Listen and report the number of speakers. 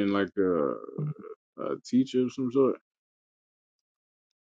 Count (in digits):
1